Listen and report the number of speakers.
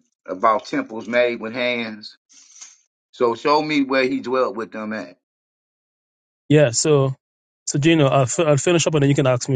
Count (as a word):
two